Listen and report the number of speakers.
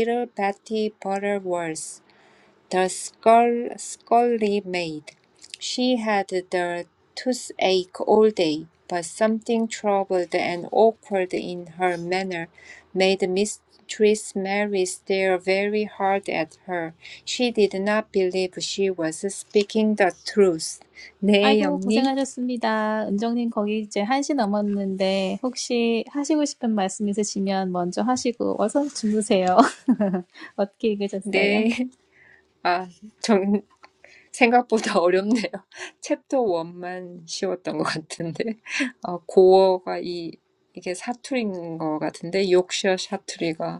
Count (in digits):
2